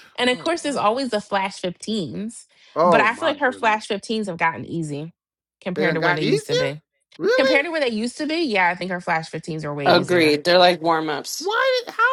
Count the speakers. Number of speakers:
three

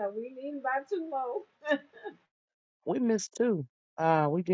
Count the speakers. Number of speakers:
two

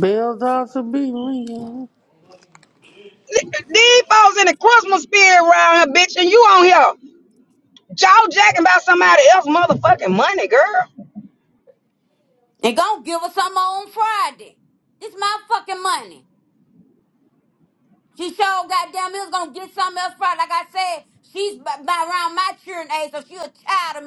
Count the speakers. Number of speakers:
three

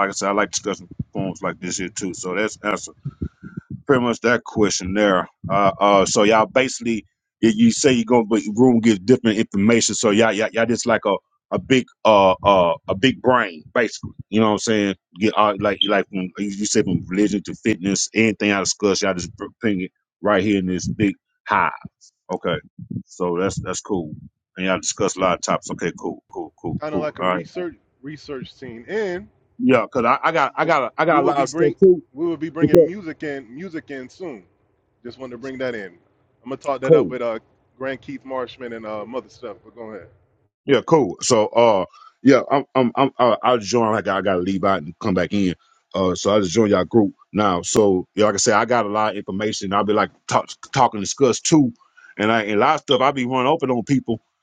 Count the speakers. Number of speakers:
two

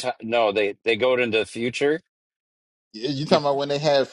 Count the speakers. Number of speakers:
two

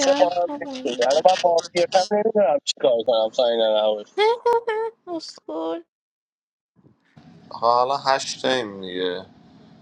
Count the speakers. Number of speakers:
three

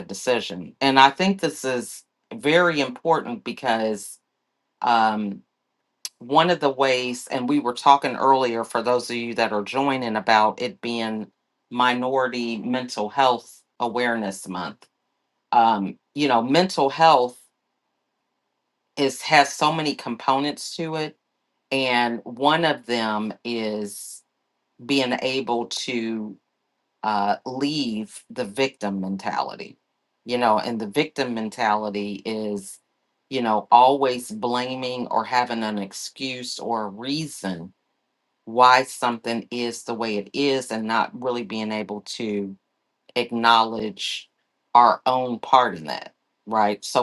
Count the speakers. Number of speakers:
one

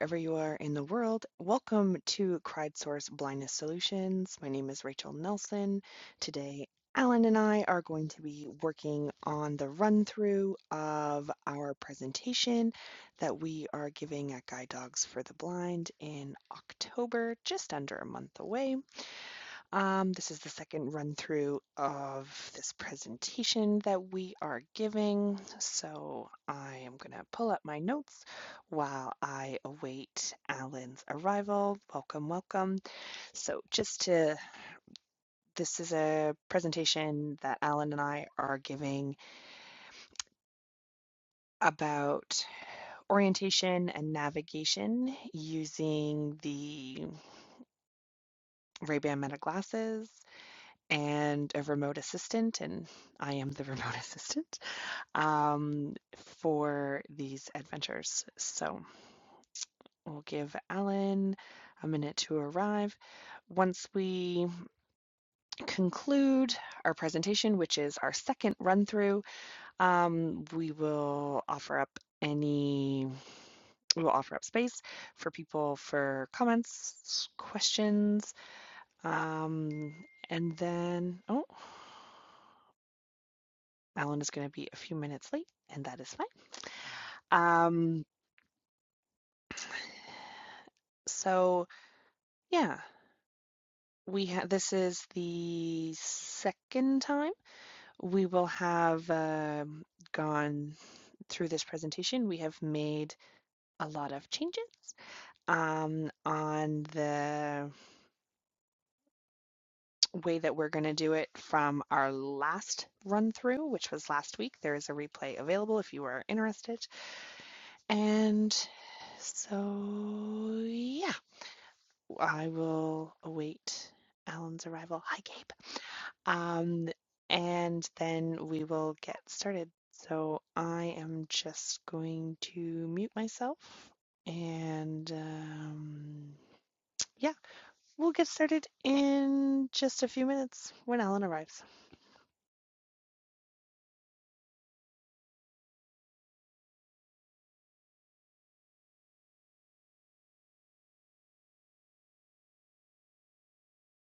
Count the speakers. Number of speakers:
one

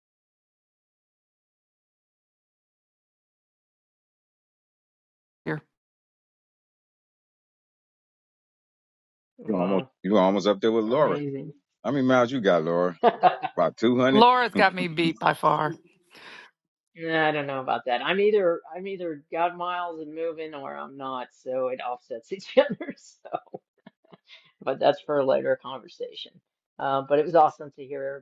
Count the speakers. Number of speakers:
three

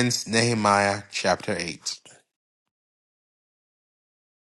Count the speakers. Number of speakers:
one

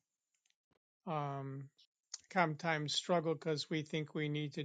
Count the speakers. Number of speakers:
one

